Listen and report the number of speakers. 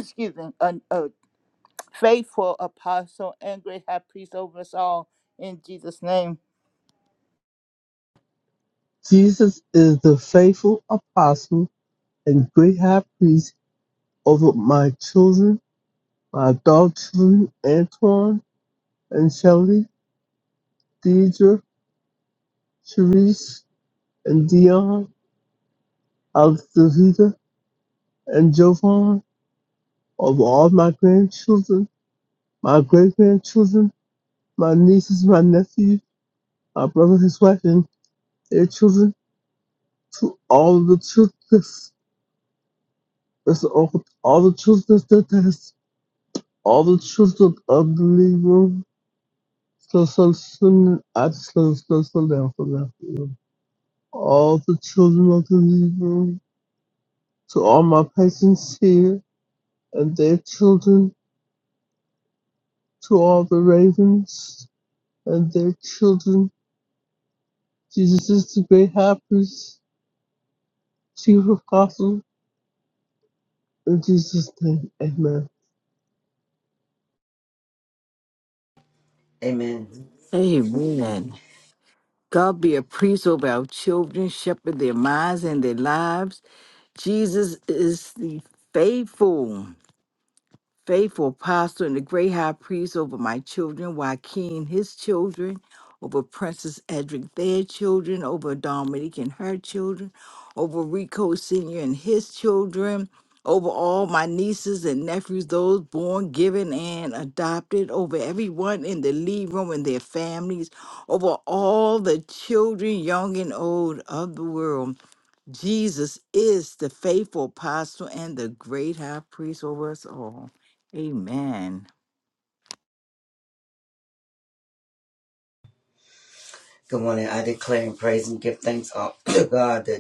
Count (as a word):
four